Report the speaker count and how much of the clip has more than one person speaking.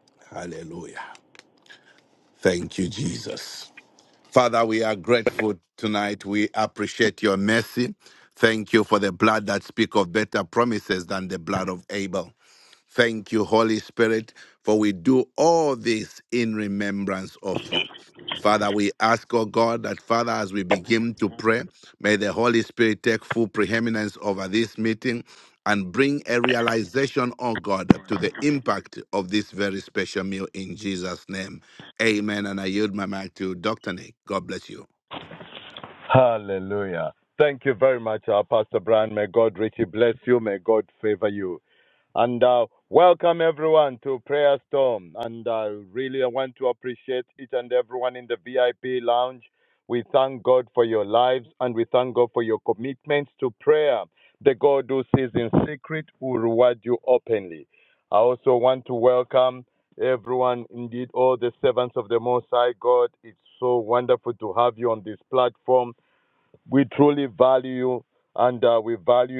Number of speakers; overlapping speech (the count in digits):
2, no overlap